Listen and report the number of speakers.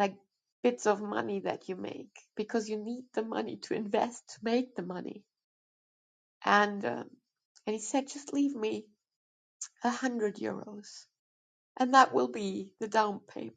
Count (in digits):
1